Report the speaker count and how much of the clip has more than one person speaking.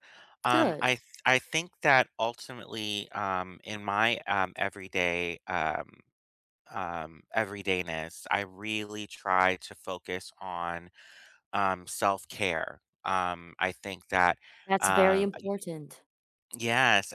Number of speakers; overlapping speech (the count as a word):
two, about 6%